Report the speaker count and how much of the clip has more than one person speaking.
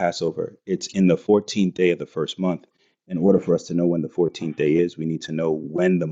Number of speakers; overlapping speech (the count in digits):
1, no overlap